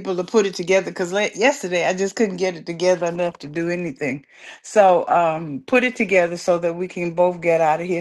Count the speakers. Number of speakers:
one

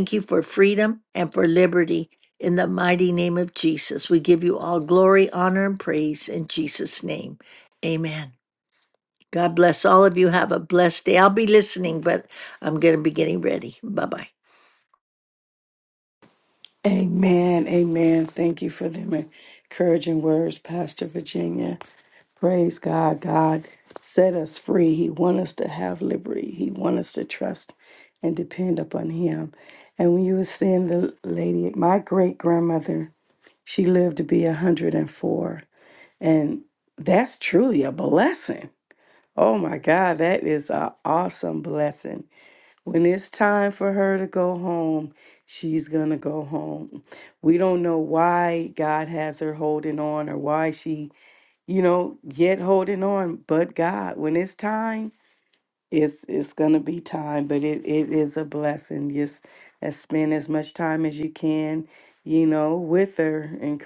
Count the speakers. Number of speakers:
two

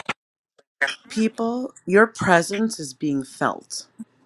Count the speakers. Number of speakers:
one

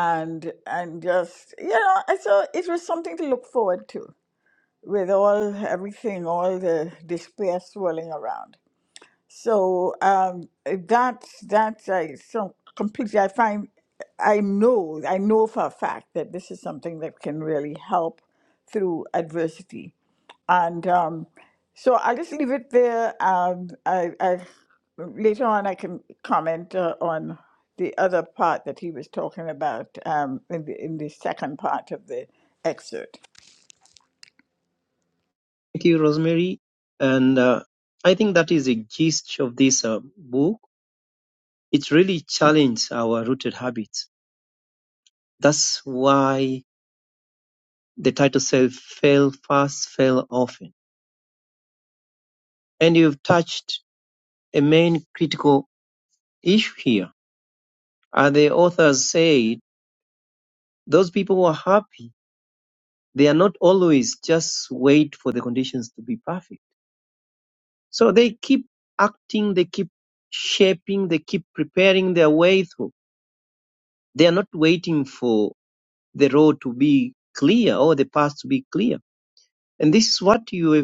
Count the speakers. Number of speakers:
two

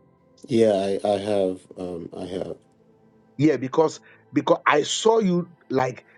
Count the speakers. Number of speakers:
two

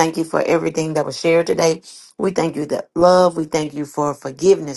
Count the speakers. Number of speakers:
one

